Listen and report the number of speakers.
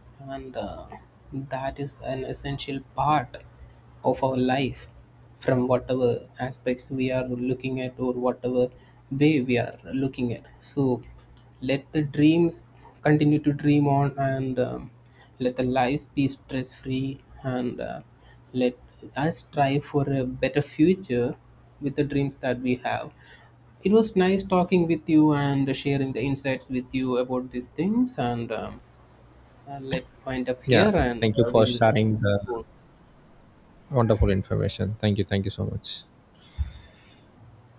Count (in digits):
2